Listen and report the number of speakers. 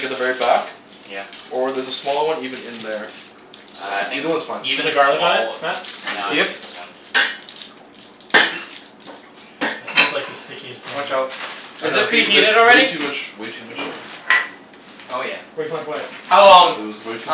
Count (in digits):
4